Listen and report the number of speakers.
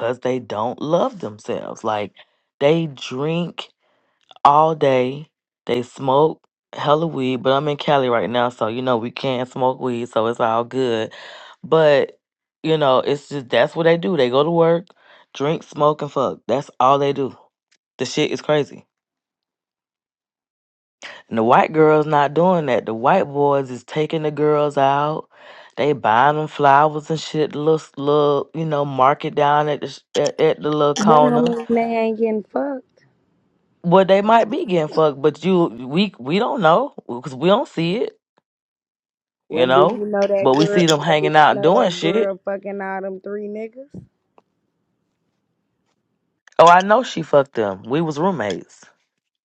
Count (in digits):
2